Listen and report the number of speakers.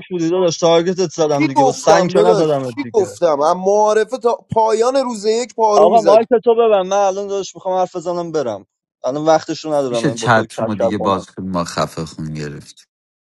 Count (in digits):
3